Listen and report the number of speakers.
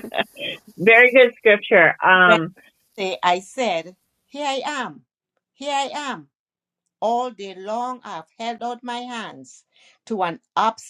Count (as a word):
two